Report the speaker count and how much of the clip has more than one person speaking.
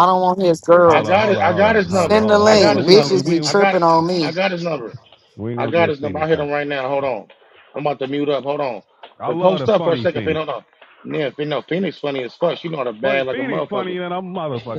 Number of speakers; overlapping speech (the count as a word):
three, about 40%